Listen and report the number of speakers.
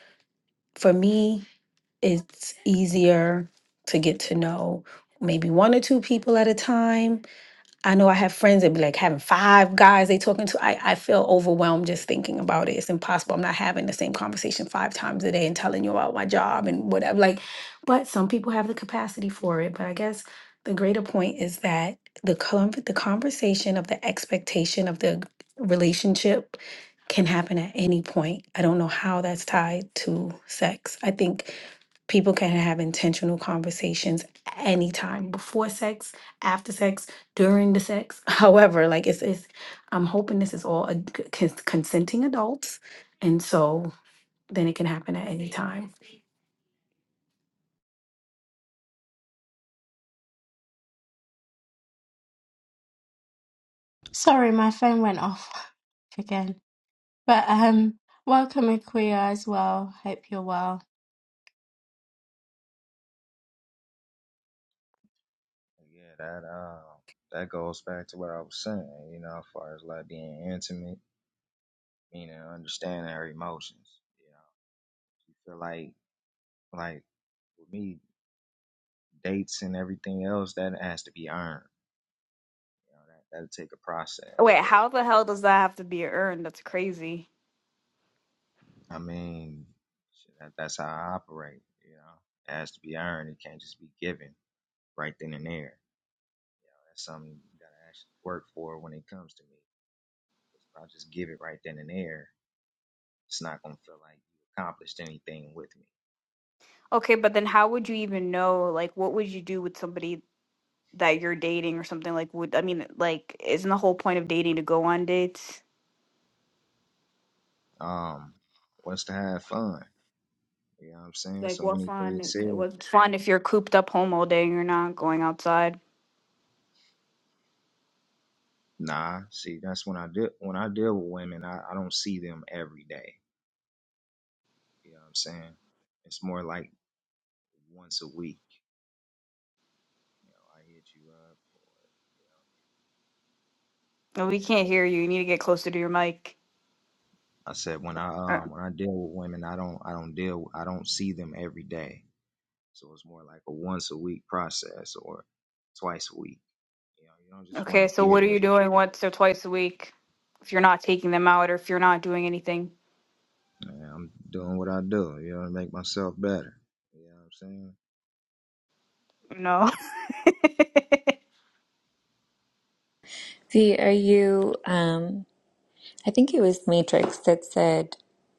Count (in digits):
5